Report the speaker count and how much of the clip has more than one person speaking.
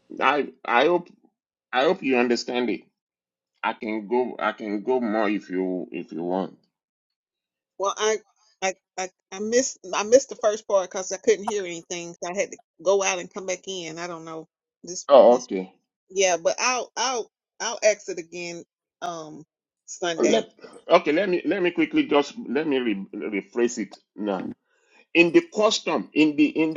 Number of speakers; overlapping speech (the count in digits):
2, about 1%